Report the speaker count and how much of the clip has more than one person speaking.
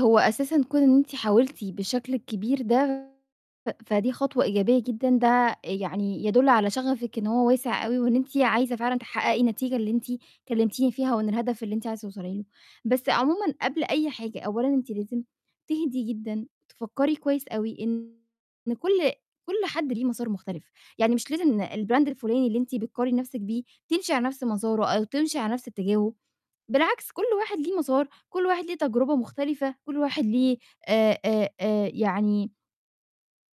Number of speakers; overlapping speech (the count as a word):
one, no overlap